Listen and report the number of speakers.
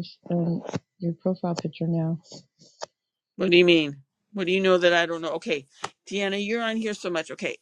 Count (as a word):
two